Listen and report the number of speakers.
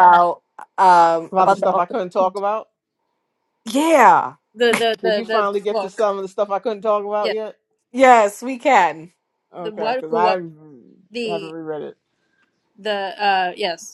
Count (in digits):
3